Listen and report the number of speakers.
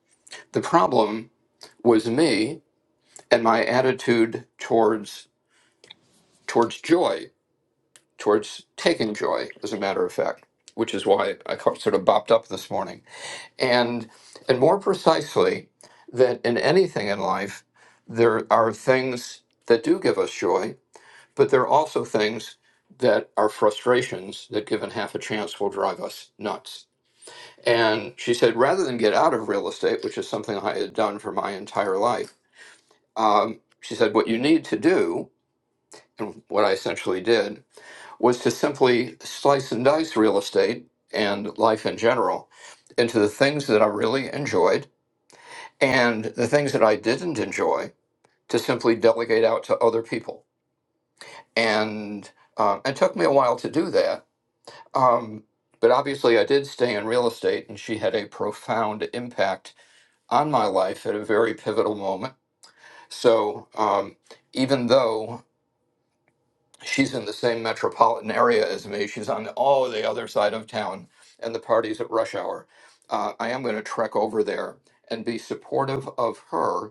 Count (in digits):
1